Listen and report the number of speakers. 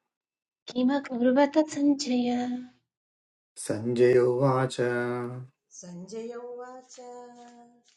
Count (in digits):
3